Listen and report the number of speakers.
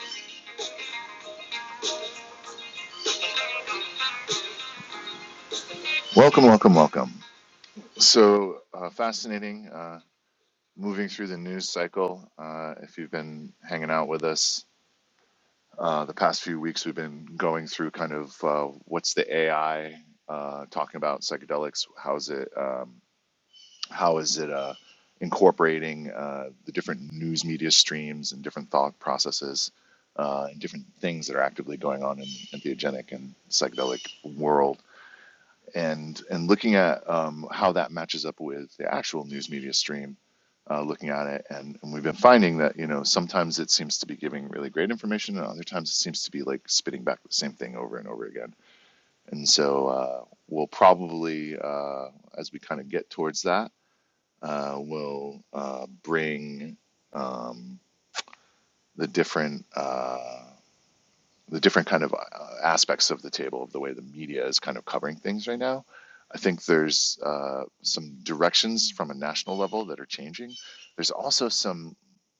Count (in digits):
1